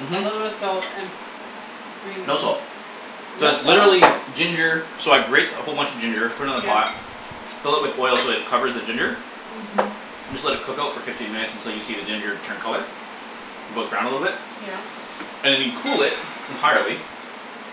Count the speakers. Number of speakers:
2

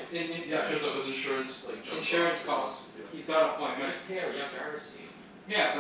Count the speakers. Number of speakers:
3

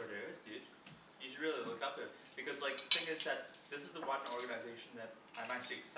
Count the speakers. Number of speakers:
1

